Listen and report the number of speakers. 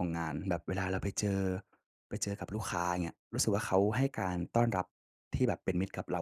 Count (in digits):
1